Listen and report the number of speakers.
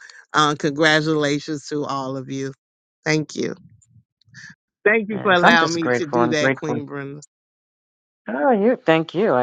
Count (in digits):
2